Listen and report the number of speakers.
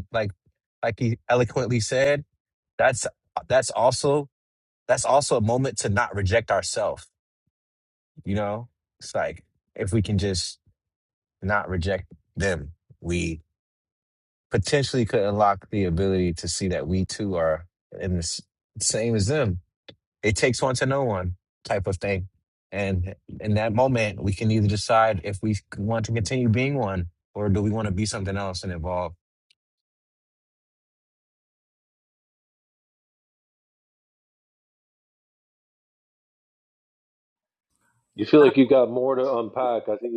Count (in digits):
2